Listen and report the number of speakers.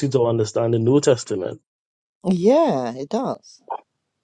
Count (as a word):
two